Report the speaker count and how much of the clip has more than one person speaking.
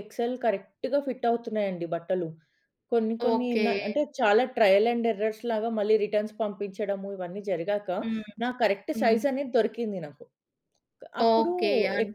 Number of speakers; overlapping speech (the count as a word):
two, about 10%